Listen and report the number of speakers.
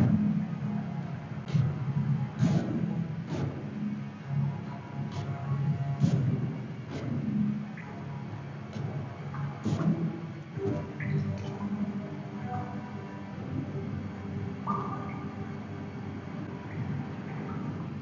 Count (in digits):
0